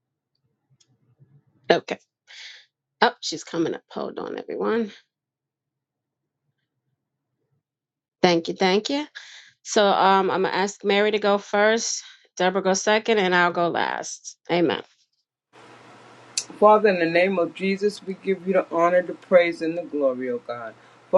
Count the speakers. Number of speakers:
2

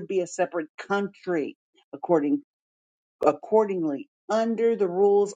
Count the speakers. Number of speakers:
1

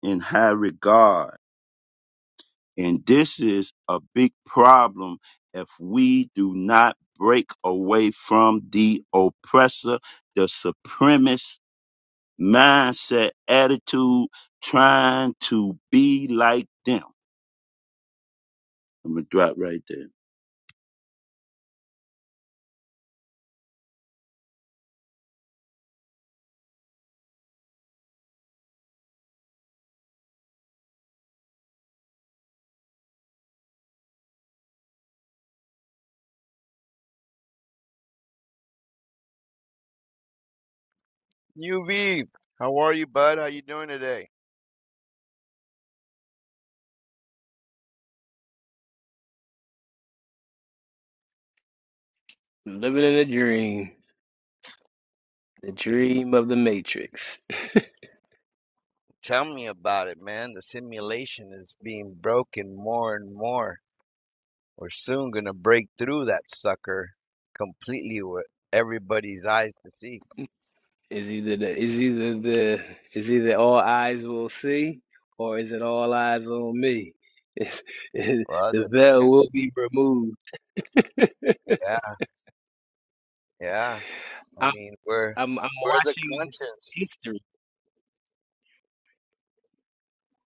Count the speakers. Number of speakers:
3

